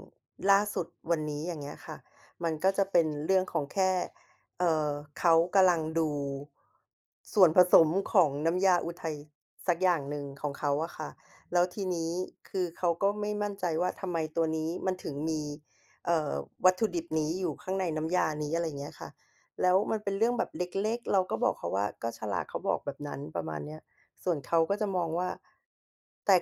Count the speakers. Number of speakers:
1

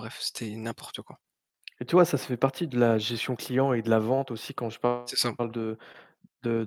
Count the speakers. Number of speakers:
2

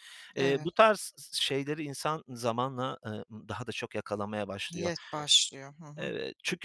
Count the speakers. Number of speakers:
2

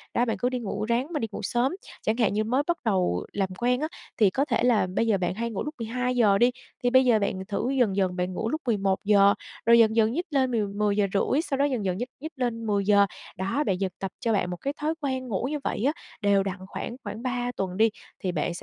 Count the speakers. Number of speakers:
1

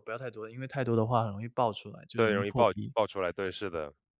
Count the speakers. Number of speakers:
2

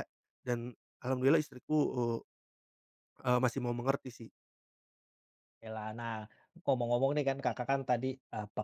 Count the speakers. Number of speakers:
2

